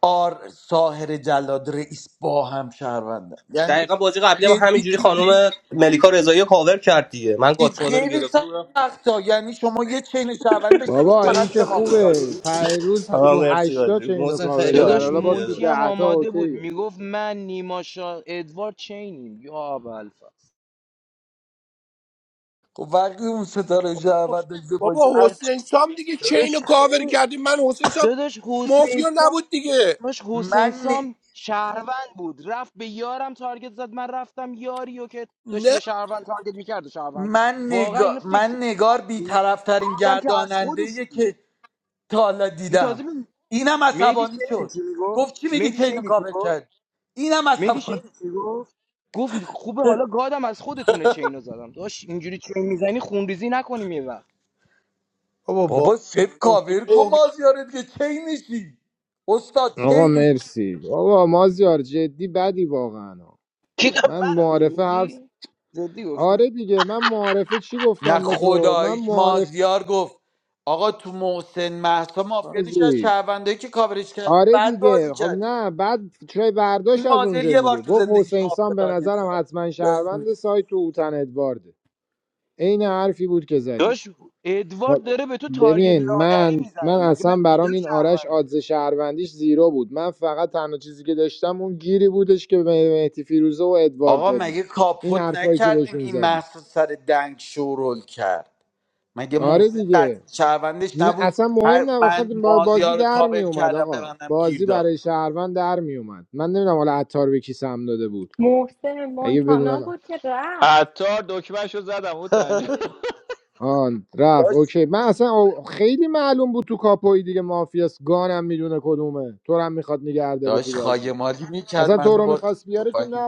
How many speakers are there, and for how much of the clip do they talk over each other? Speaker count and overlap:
seven, about 28%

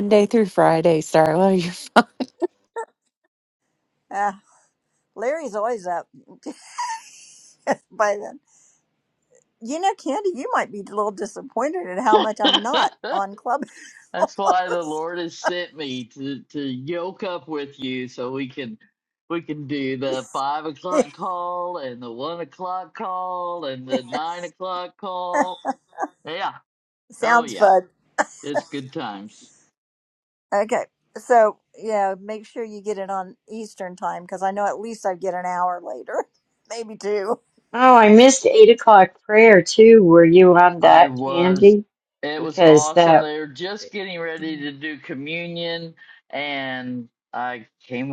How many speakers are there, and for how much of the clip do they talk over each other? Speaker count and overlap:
four, about 5%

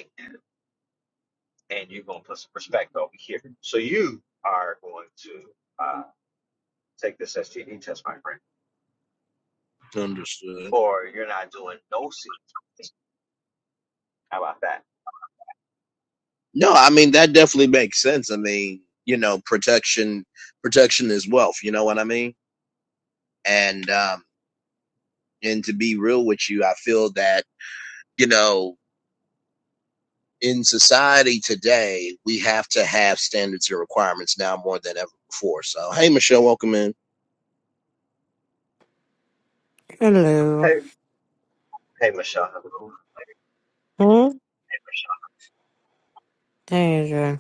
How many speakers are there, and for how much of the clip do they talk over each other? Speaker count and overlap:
three, about 1%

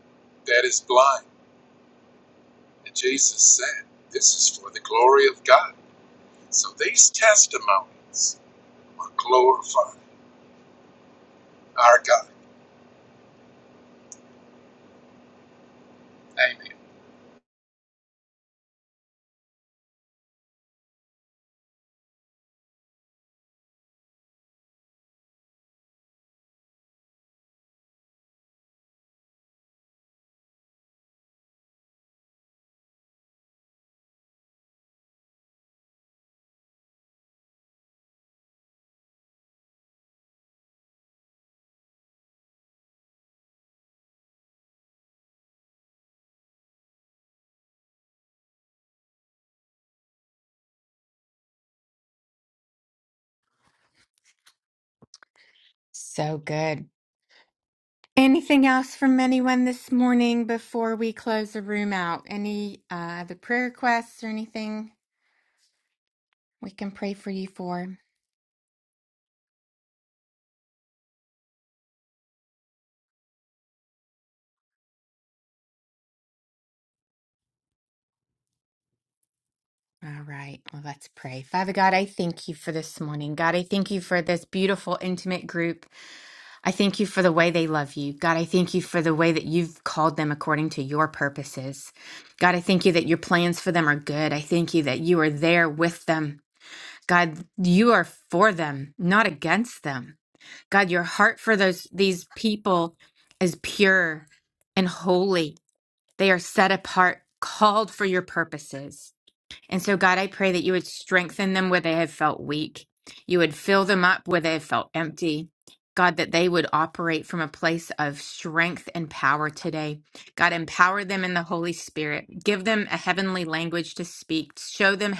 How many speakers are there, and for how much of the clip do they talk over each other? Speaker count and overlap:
two, no overlap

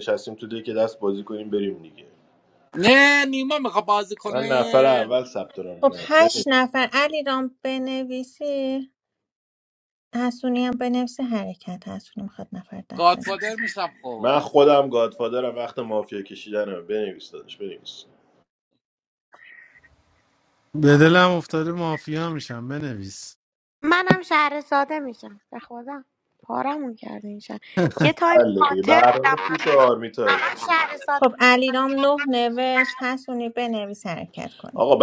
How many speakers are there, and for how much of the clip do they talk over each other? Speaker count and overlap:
five, about 14%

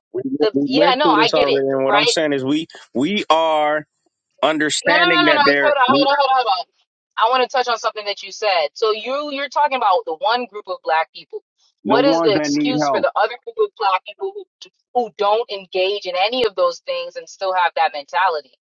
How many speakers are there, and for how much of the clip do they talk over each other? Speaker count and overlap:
two, about 20%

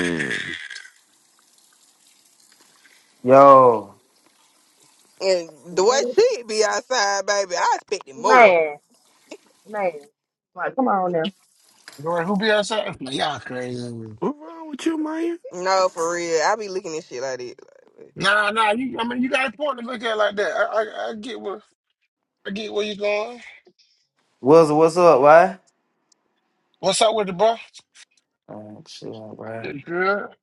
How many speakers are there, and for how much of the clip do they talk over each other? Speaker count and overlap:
five, about 2%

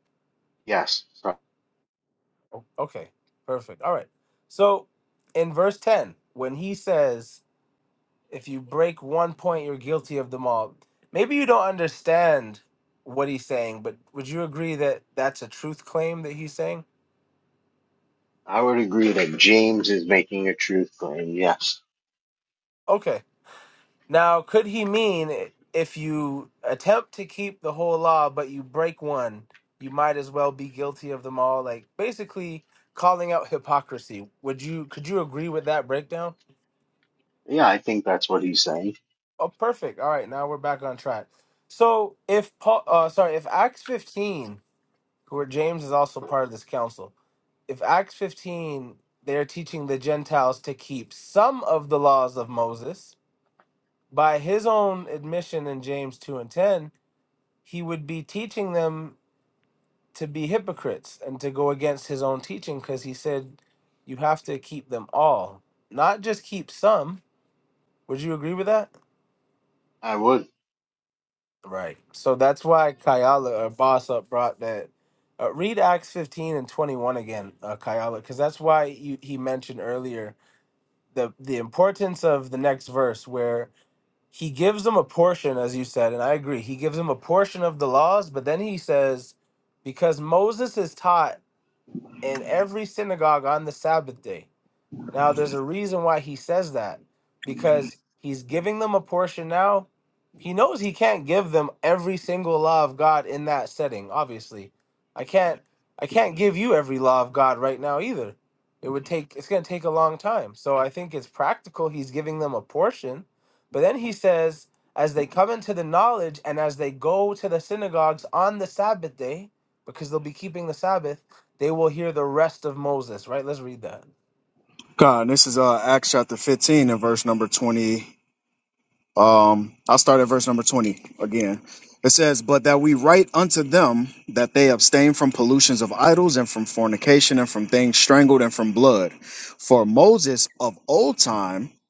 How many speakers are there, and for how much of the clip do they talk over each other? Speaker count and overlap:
three, no overlap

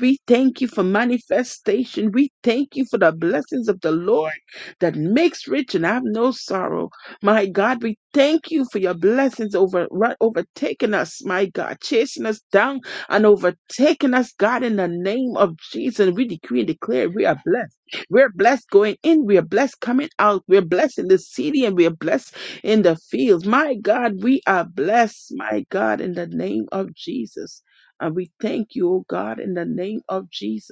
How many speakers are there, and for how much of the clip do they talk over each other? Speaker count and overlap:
one, no overlap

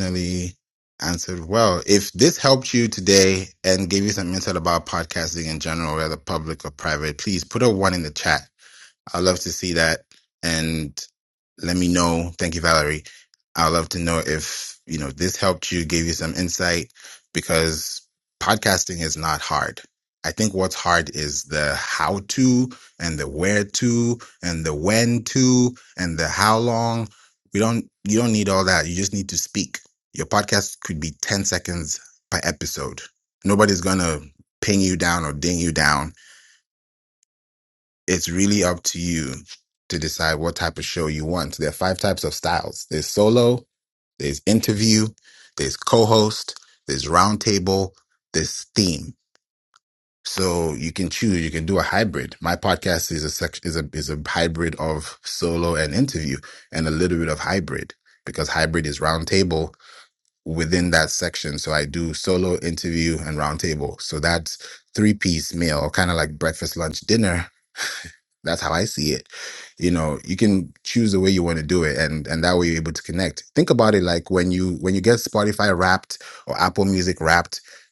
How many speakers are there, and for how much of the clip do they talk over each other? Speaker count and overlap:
one, no overlap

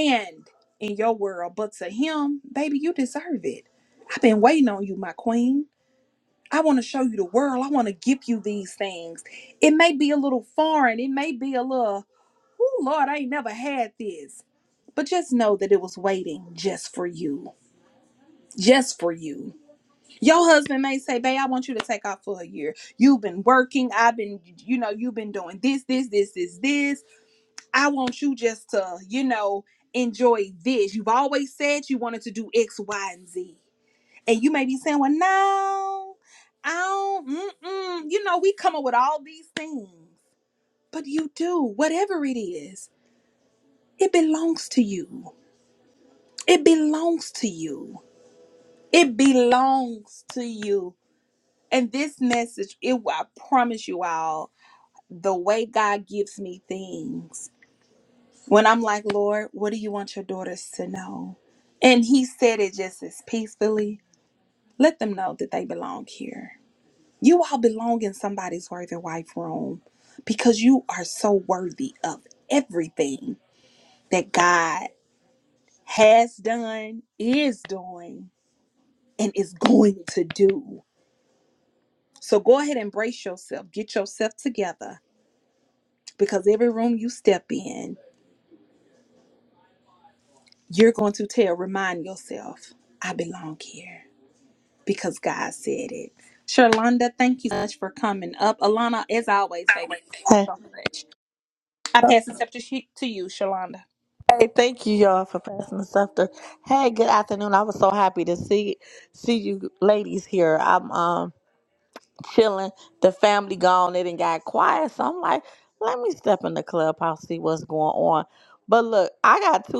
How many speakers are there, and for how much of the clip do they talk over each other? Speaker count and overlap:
two, under 1%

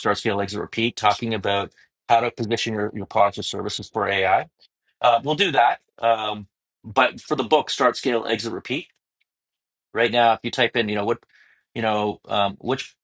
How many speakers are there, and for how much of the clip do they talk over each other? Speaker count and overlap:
one, no overlap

